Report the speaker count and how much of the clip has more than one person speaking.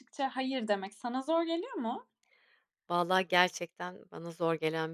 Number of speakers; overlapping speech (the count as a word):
two, no overlap